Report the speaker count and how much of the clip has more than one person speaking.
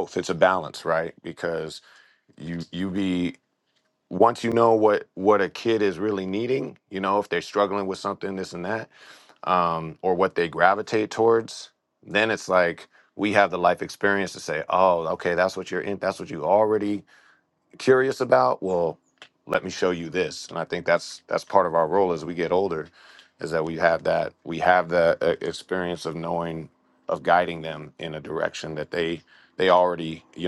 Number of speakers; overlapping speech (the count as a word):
one, no overlap